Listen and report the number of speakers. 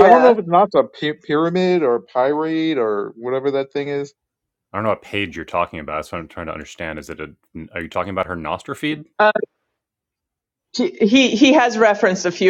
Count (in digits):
3